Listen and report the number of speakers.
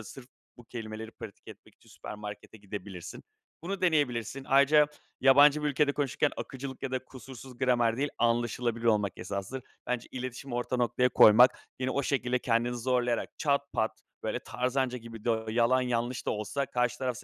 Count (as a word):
one